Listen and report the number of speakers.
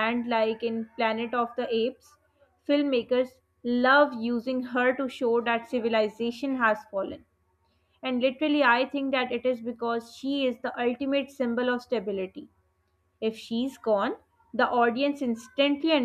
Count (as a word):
one